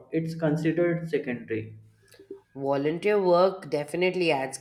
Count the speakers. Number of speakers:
two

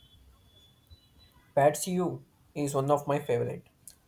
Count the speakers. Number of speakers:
one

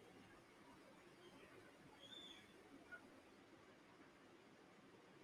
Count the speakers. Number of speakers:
zero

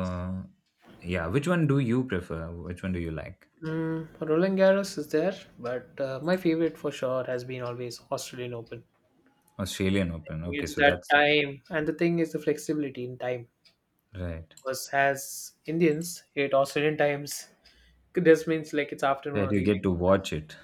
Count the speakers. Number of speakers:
two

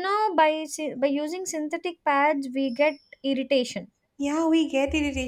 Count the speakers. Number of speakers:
two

